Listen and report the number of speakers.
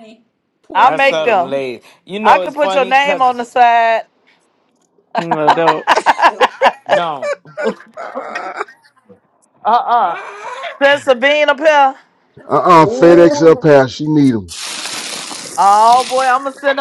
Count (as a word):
five